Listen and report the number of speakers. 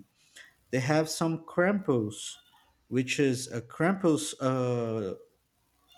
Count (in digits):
1